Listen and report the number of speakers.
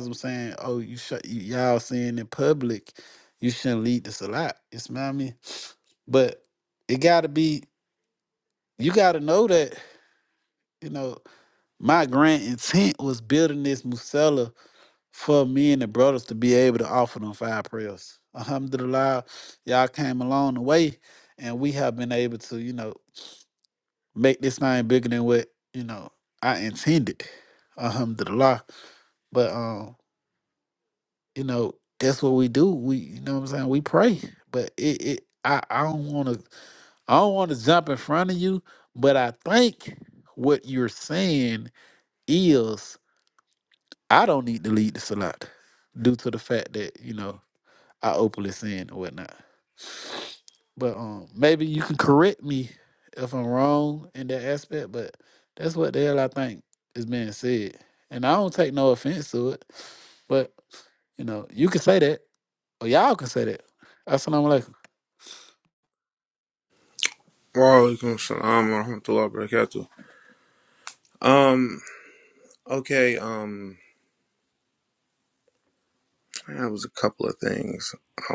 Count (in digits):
2